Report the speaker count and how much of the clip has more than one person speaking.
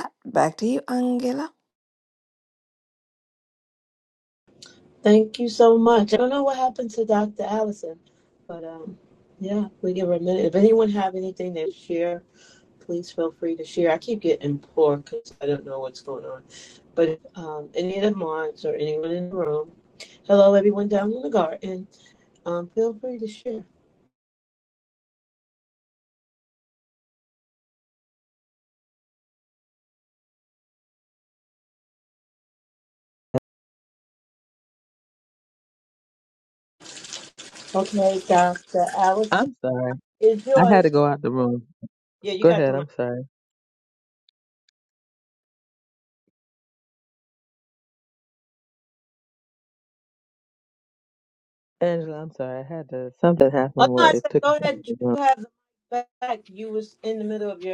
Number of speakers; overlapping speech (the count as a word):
three, about 4%